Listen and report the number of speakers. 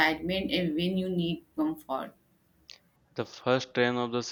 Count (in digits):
2